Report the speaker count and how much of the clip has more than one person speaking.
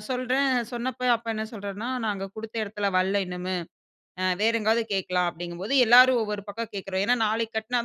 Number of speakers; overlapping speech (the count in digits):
1, no overlap